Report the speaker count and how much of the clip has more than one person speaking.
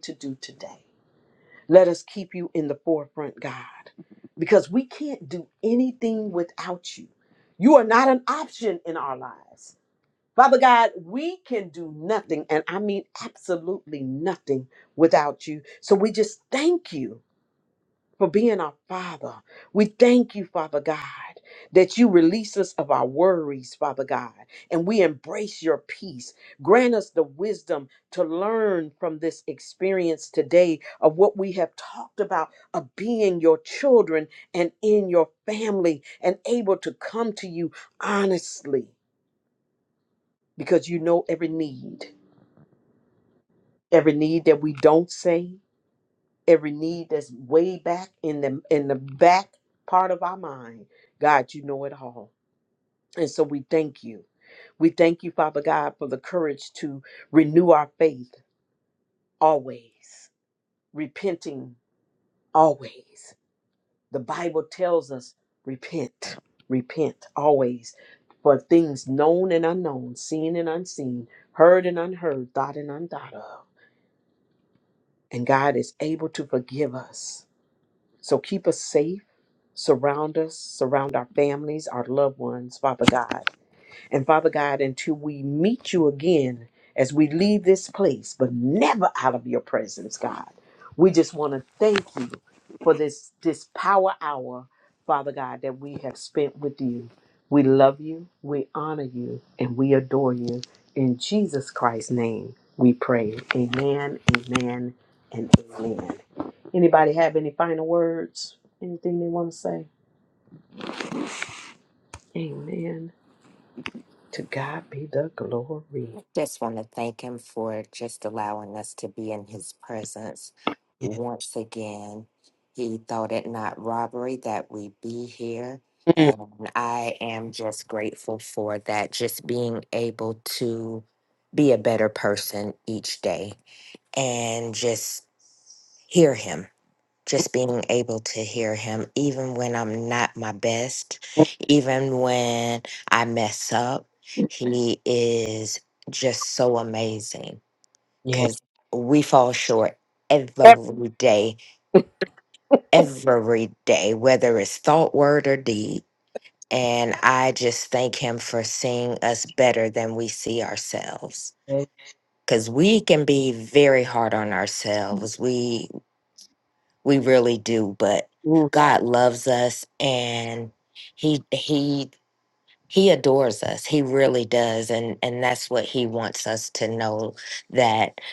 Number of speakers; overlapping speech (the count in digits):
2, under 1%